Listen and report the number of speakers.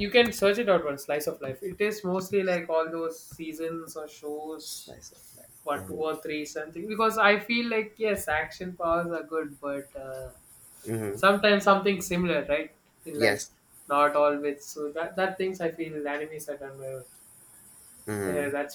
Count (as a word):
two